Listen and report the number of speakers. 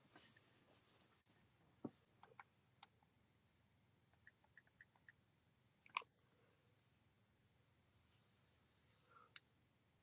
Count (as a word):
zero